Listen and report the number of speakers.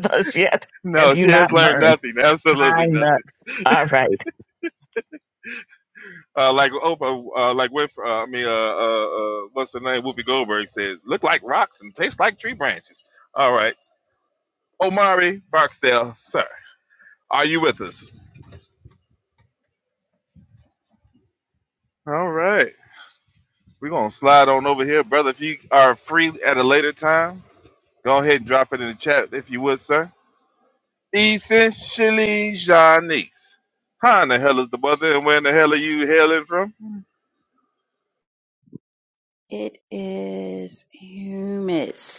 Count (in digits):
3